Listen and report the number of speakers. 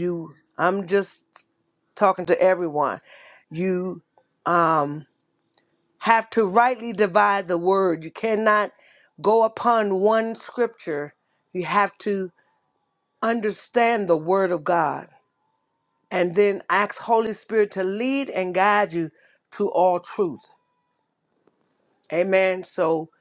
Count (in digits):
1